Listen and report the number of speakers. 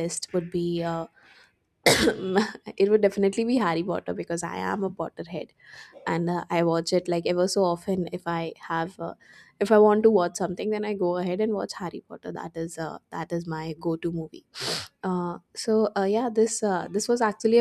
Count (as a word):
one